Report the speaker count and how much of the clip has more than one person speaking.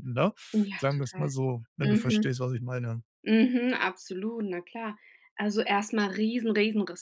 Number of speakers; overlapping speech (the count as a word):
two, about 14%